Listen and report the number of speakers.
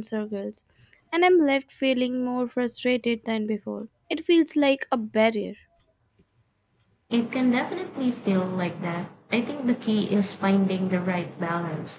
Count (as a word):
two